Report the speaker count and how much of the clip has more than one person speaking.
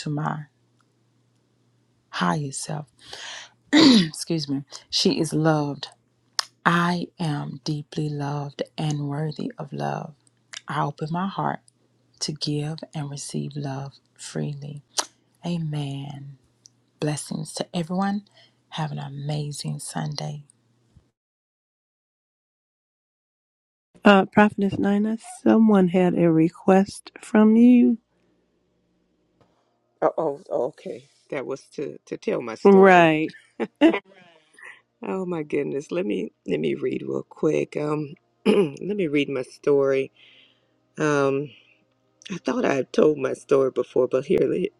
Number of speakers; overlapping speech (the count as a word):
three, about 1%